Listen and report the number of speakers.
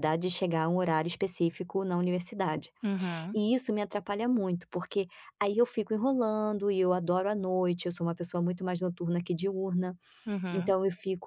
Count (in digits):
2